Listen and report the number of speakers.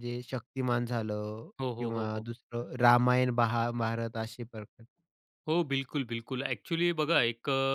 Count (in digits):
2